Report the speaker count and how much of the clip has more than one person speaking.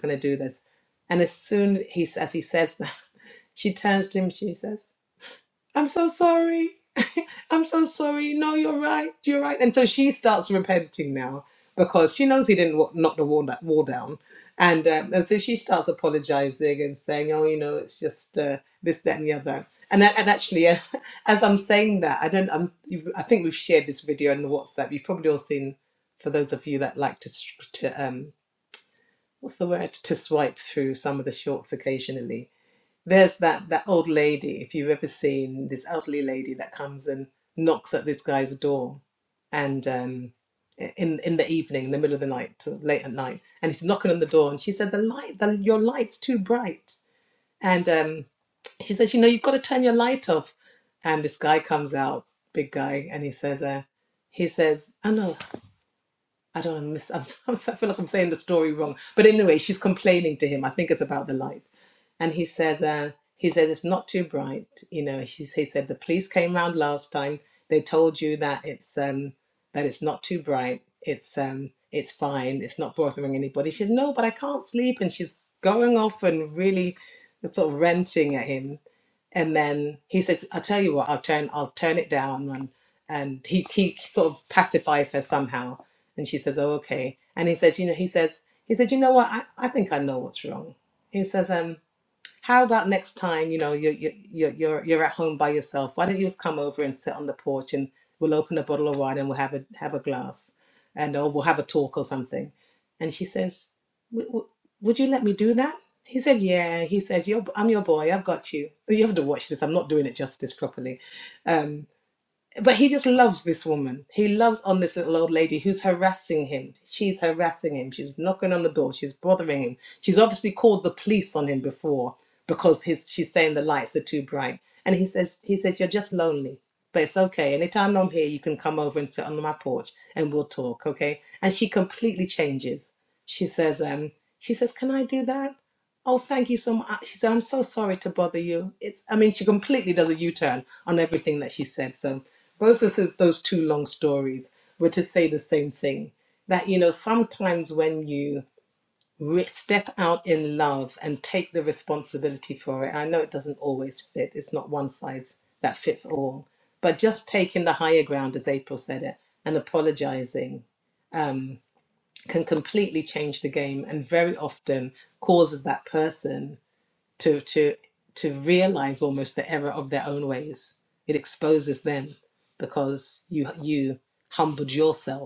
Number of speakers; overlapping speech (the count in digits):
1, no overlap